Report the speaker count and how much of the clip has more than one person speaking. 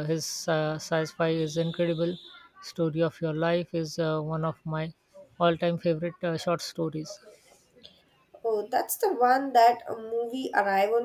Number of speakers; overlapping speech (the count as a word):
two, no overlap